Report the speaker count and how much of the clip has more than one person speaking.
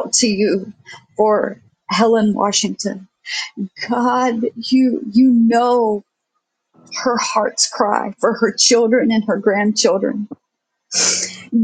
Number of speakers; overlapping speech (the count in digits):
1, no overlap